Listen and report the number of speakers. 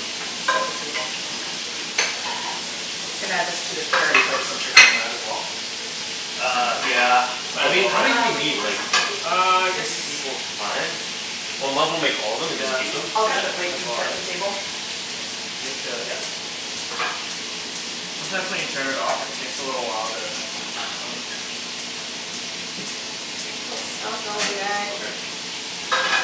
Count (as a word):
four